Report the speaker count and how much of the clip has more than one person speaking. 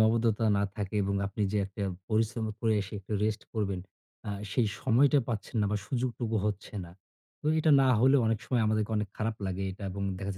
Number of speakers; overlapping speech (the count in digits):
1, no overlap